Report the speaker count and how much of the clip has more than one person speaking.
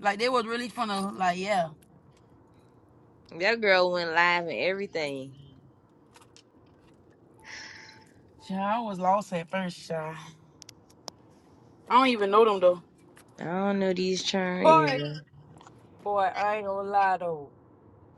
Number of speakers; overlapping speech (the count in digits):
3, about 2%